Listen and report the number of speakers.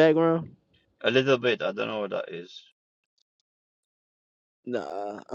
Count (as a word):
two